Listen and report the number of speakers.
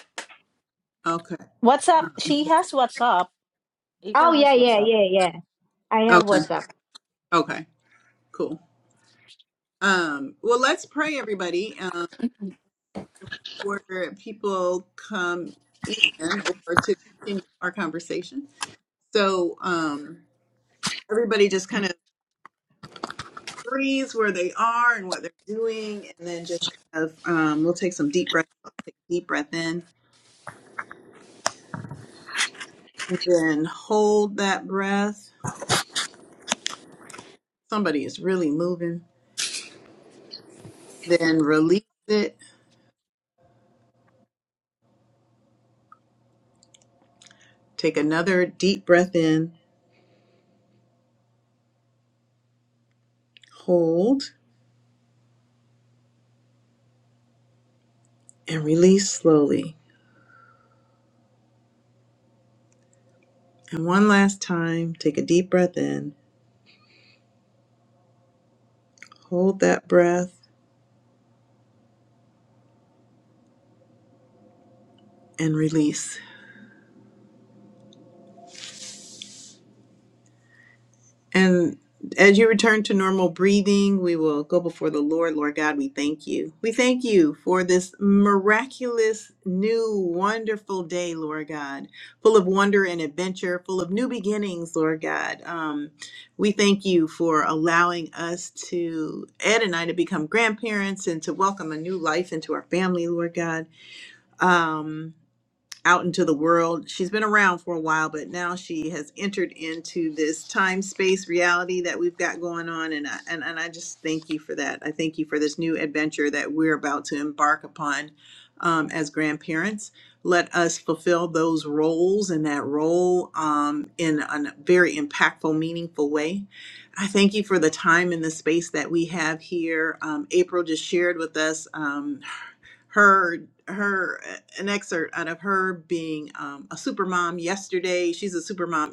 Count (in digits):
3